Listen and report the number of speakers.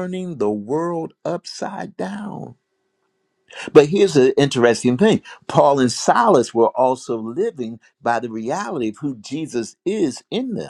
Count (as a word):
one